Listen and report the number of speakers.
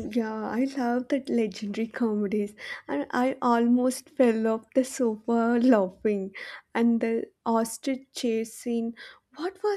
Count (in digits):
1